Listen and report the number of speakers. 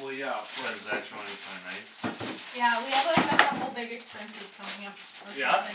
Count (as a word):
three